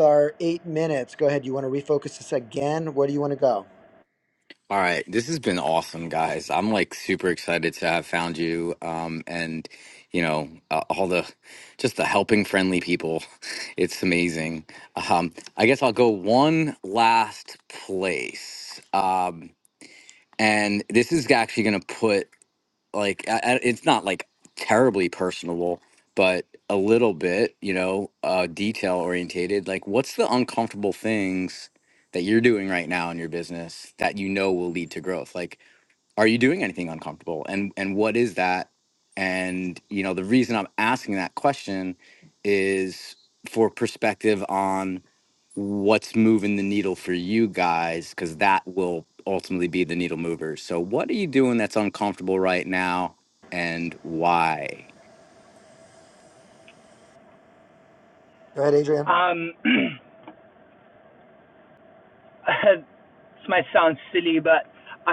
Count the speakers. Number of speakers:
3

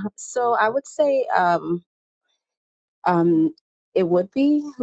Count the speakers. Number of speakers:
1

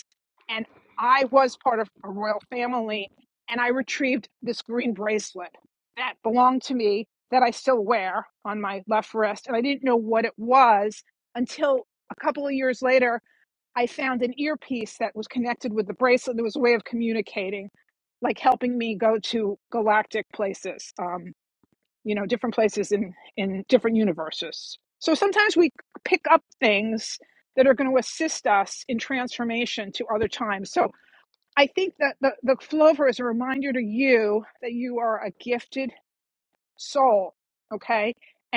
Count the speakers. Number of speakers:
1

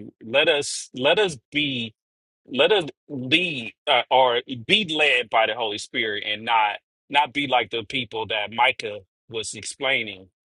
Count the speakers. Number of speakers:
1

